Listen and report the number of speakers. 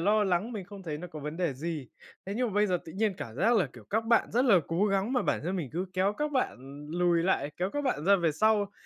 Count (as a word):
one